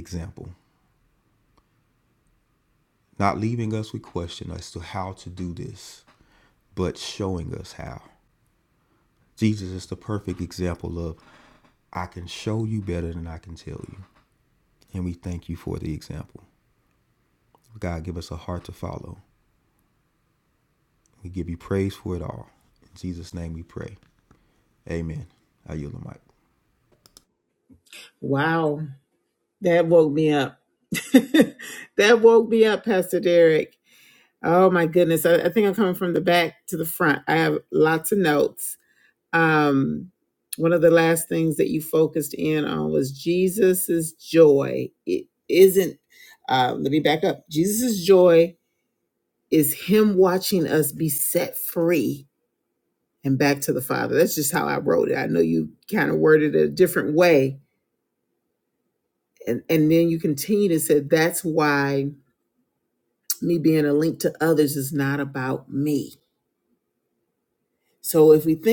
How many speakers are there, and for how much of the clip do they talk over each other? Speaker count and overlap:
two, no overlap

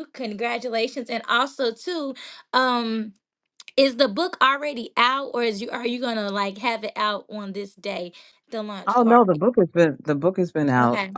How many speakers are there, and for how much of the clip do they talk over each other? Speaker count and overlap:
two, about 8%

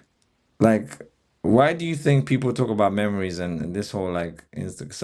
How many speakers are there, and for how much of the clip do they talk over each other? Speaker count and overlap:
one, no overlap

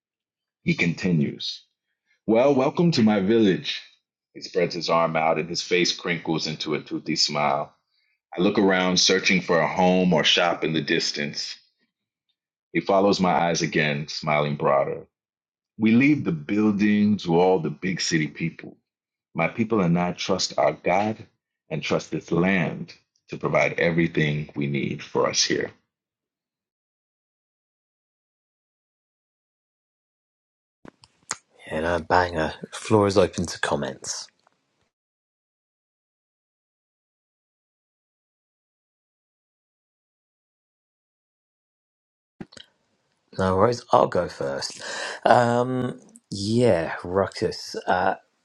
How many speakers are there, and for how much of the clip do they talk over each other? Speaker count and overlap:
two, no overlap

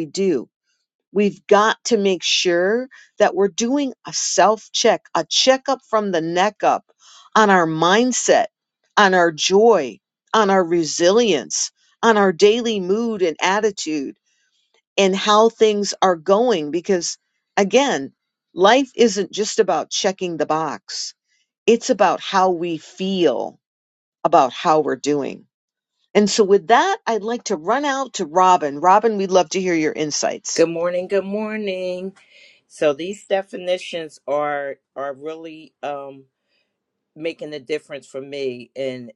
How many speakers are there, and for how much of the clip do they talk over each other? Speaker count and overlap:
two, no overlap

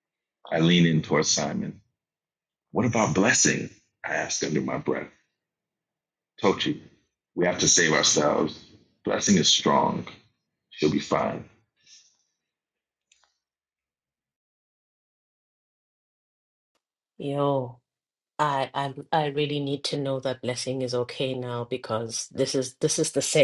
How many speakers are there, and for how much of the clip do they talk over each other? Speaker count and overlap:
two, no overlap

